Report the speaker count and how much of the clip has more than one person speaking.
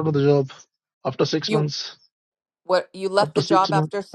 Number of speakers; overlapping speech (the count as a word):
two, about 21%